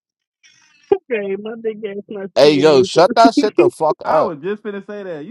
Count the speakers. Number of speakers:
3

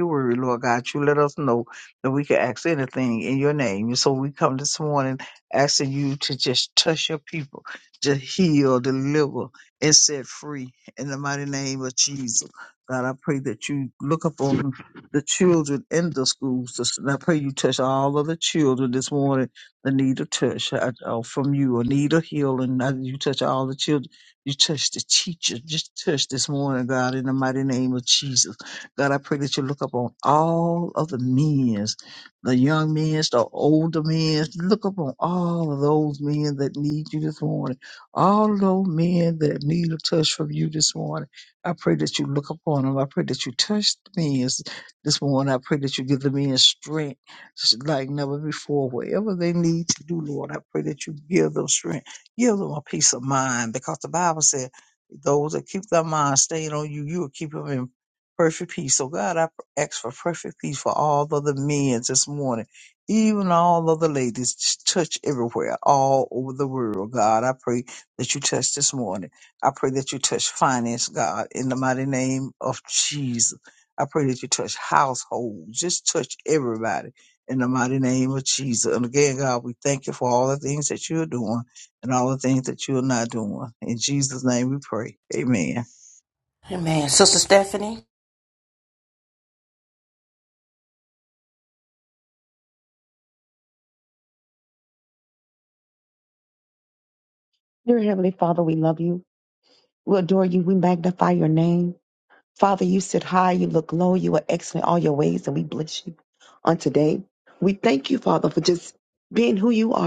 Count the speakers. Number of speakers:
3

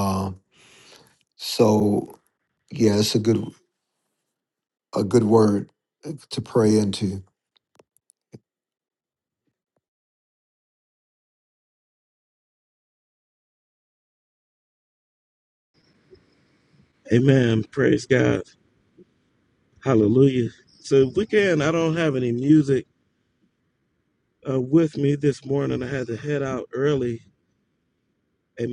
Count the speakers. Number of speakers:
2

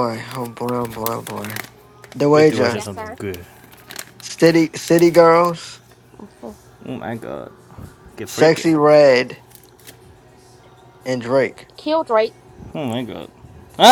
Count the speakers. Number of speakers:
3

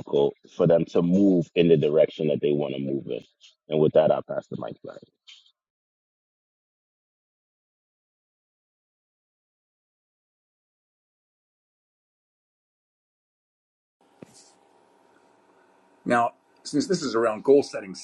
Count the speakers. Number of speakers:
2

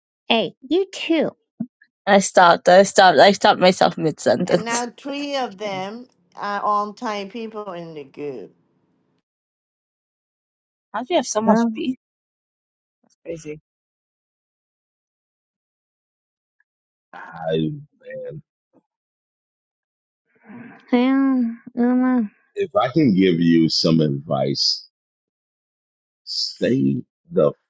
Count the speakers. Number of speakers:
4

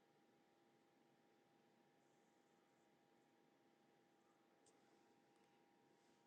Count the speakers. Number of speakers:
0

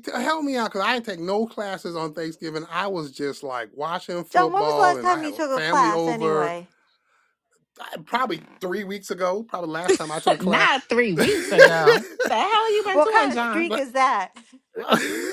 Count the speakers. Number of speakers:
3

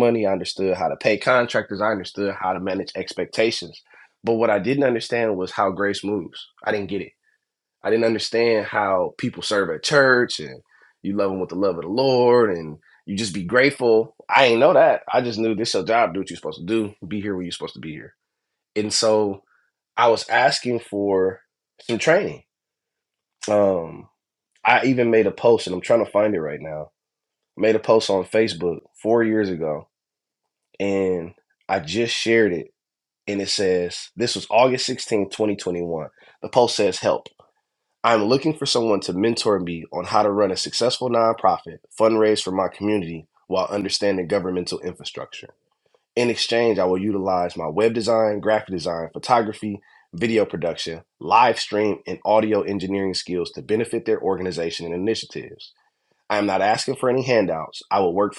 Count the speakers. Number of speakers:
1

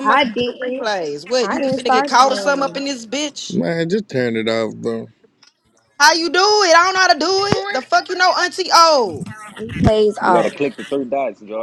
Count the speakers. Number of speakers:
4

